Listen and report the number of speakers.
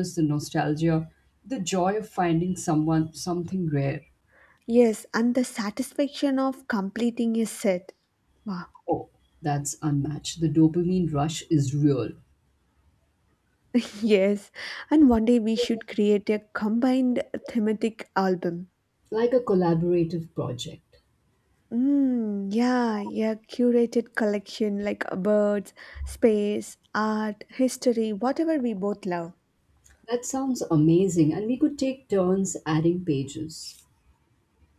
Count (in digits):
2